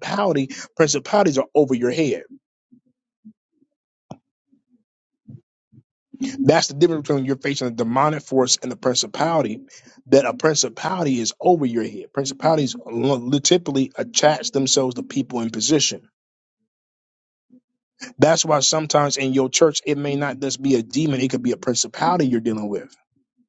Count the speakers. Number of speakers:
one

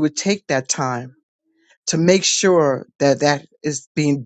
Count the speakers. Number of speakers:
one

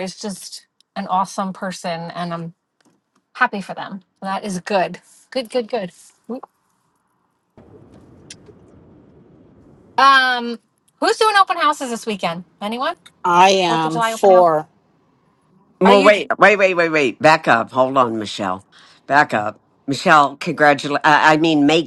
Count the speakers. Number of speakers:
three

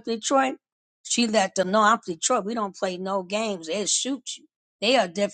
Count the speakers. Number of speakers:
one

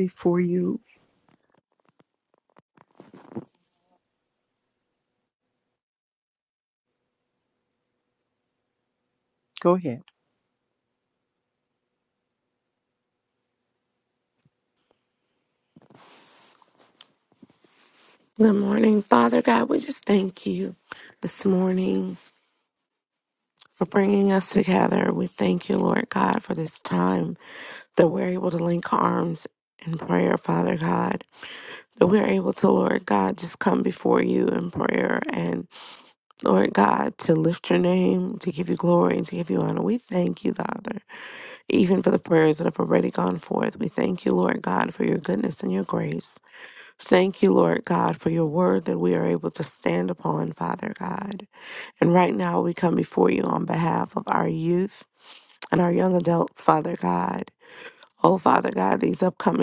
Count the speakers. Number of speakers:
two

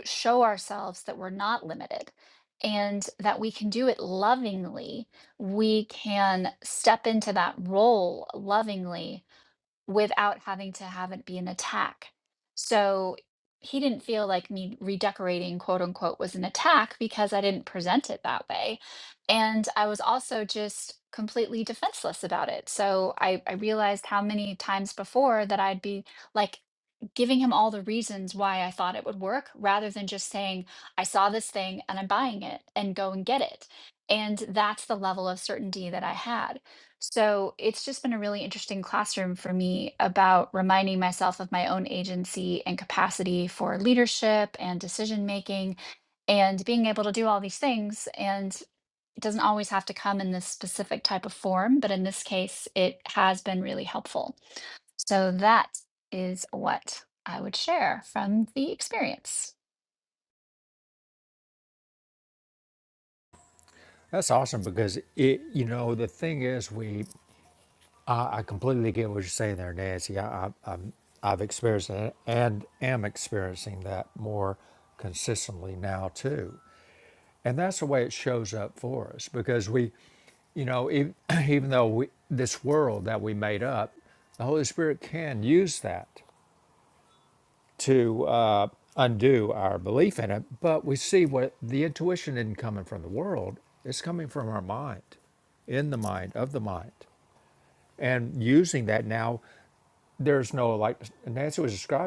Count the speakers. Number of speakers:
two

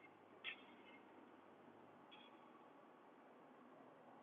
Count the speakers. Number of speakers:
zero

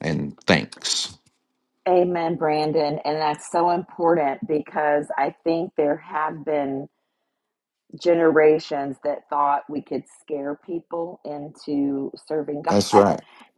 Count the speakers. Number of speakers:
two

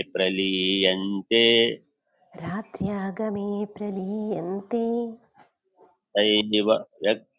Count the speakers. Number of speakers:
two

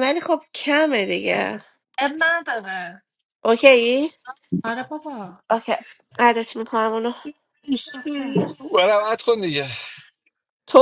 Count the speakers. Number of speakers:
three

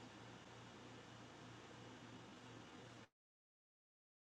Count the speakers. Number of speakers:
zero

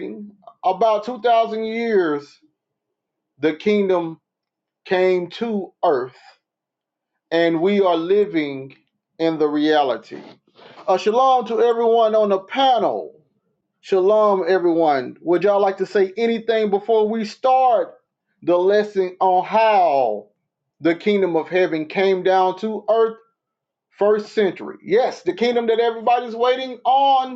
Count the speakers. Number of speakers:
one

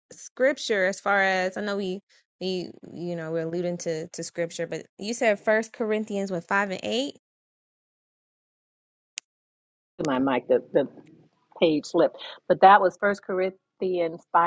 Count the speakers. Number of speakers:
two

